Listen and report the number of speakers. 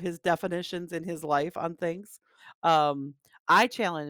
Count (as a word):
one